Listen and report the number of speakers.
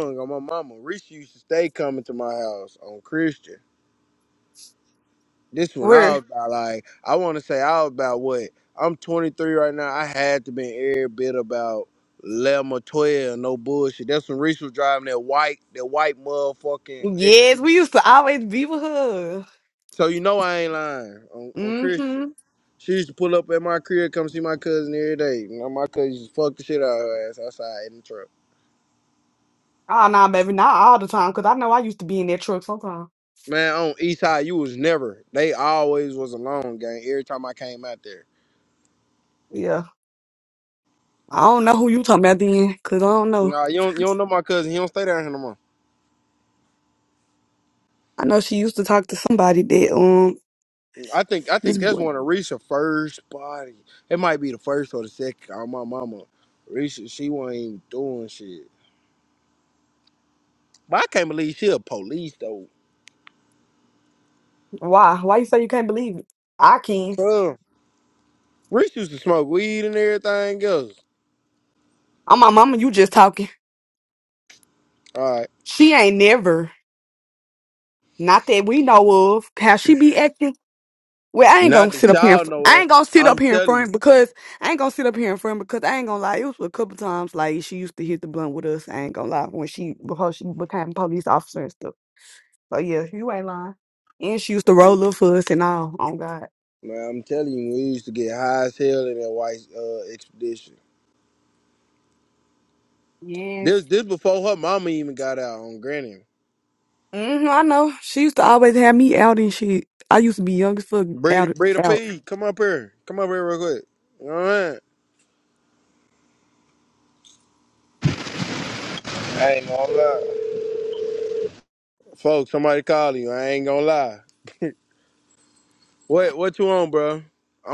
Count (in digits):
3